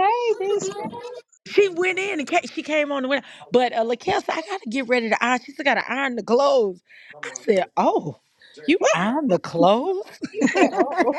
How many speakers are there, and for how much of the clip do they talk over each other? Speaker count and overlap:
two, no overlap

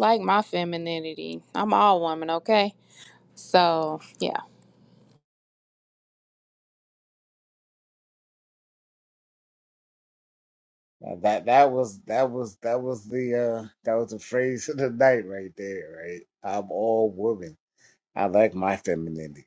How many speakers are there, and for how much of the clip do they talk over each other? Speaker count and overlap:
two, no overlap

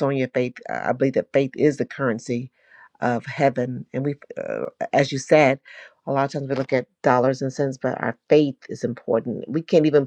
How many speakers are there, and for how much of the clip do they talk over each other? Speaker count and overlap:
one, no overlap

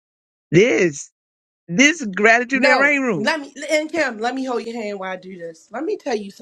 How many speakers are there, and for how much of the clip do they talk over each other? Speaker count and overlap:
two, about 11%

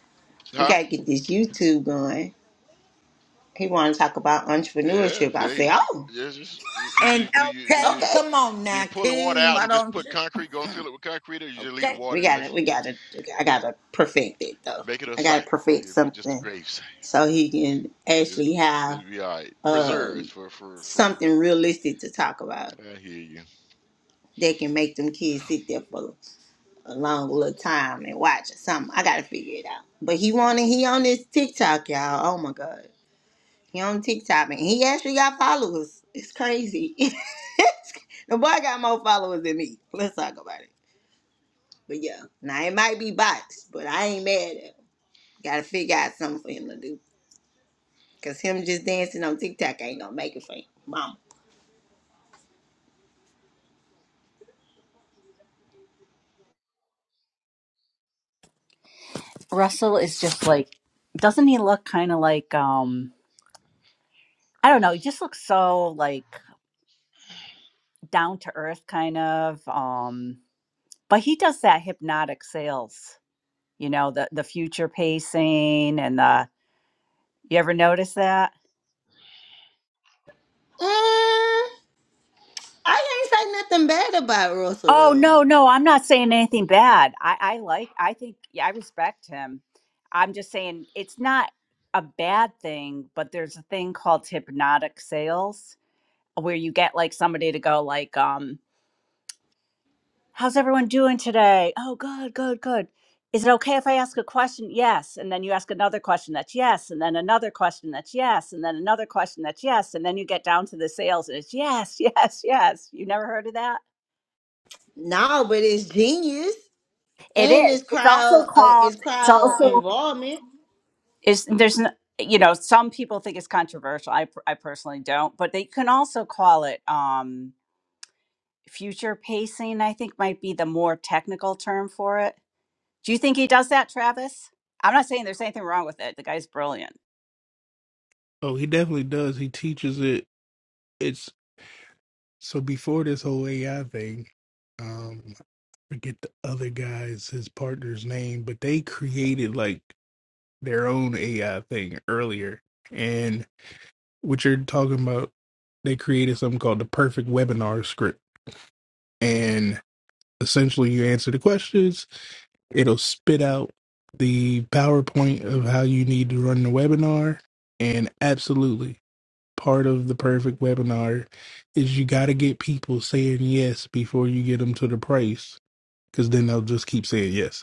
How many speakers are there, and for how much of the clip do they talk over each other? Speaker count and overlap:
five, about 5%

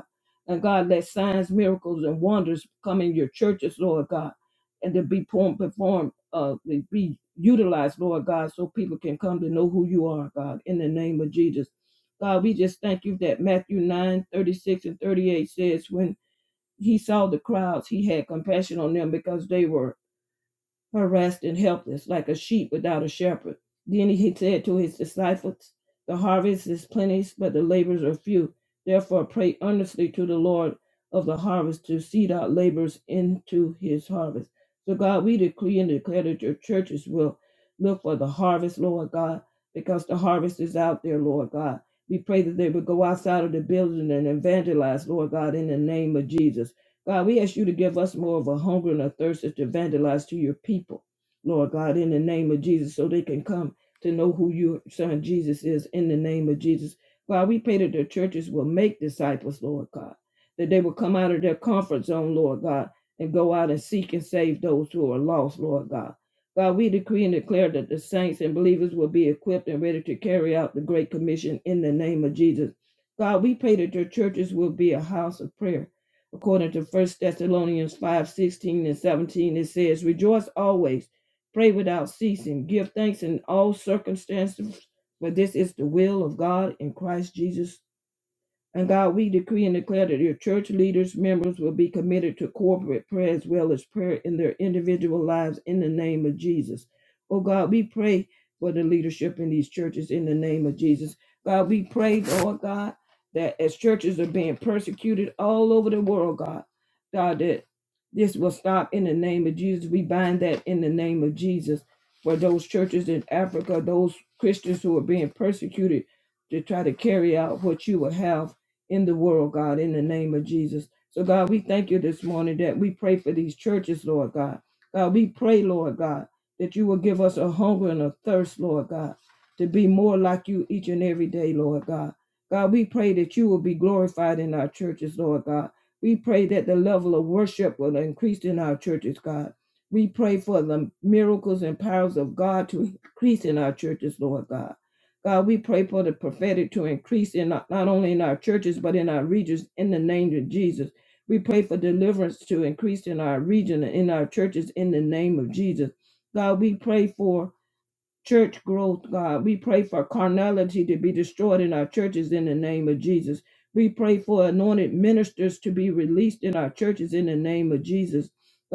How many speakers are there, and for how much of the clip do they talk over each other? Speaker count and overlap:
one, no overlap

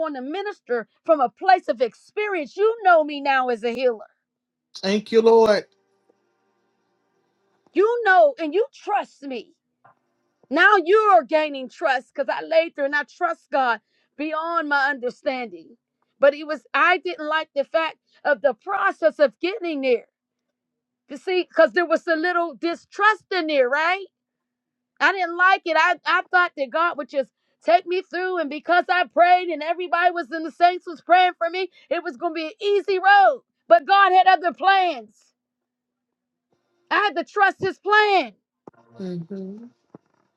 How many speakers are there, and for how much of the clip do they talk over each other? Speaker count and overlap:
two, no overlap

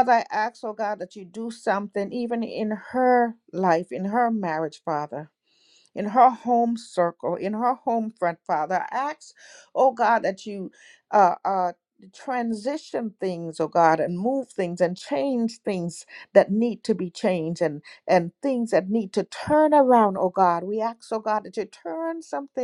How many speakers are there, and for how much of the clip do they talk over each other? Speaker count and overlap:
one, no overlap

